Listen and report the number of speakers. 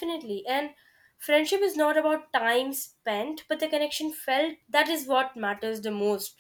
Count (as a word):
one